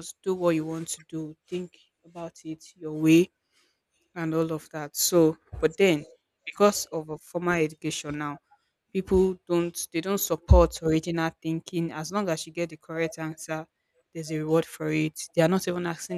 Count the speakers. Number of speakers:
1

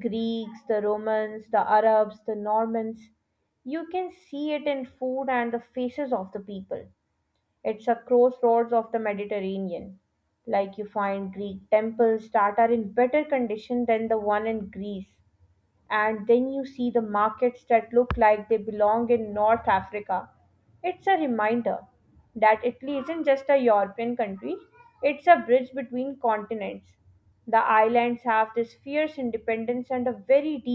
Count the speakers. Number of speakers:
1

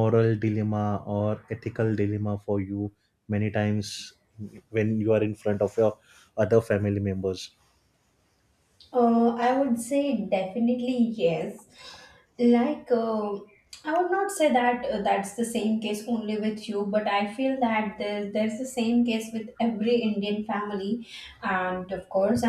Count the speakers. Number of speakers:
2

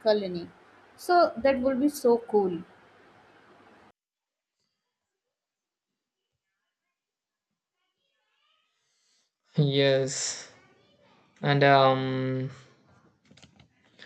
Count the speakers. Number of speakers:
2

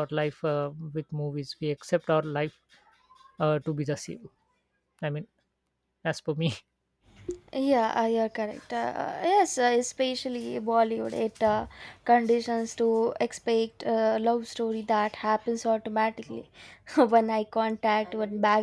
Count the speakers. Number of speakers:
2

